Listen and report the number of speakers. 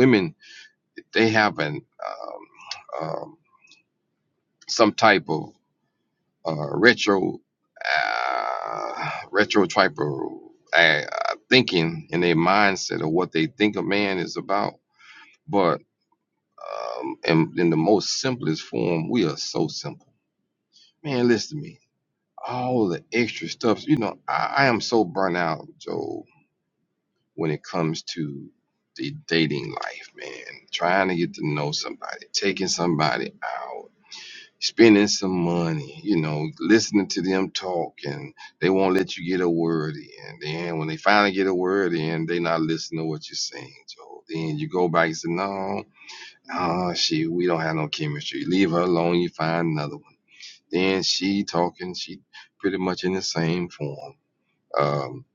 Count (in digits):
1